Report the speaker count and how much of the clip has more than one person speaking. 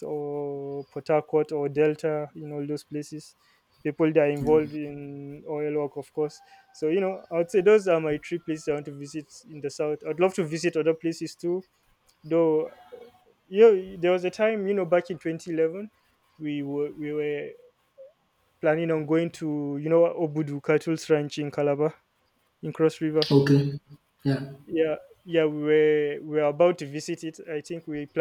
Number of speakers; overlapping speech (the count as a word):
two, about 1%